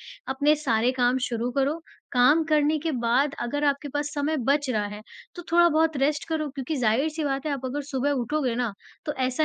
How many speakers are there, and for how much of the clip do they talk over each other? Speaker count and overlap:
one, no overlap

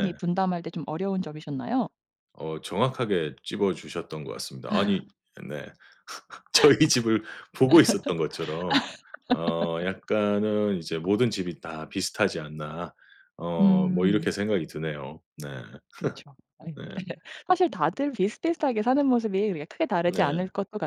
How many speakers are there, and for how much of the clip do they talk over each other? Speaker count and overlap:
two, about 6%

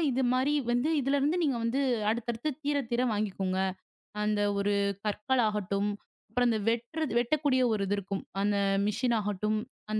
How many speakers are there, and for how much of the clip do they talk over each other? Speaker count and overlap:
one, no overlap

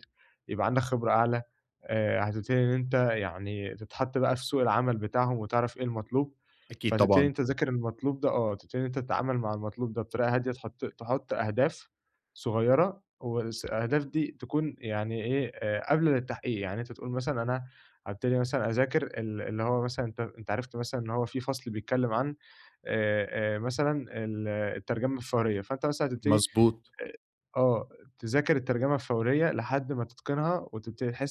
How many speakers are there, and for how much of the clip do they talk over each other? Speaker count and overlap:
two, about 2%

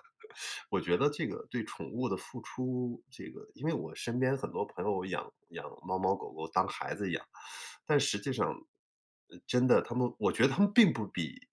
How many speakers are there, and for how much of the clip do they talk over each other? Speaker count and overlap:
one, no overlap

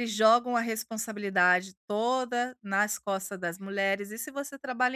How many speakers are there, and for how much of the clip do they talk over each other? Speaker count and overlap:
one, no overlap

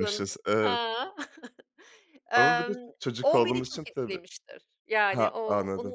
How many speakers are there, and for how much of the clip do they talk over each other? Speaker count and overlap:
two, about 45%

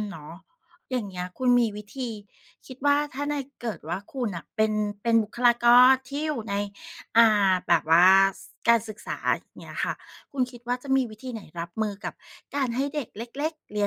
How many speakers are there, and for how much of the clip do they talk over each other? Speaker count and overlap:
one, no overlap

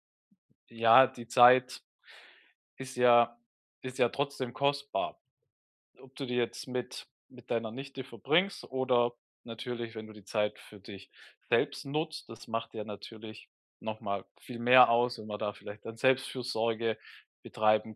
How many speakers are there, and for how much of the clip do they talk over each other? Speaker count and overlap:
one, no overlap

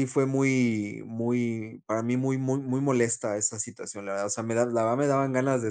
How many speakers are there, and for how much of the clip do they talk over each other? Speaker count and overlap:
one, no overlap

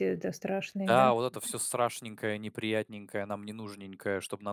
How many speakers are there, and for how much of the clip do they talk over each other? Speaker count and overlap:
two, about 6%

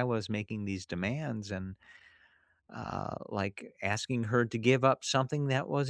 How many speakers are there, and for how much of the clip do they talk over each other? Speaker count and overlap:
one, no overlap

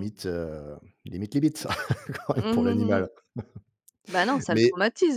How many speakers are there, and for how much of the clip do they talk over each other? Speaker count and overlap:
two, about 9%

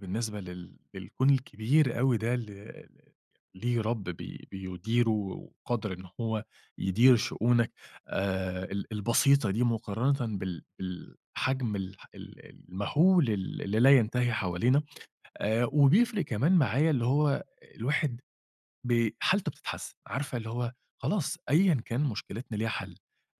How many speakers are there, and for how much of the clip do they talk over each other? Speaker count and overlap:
one, no overlap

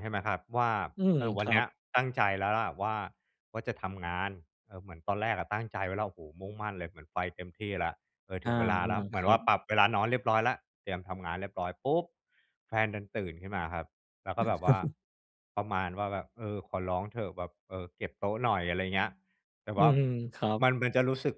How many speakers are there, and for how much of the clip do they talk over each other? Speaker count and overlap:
two, about 5%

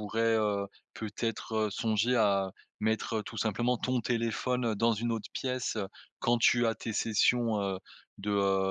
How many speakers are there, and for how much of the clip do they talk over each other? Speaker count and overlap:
one, no overlap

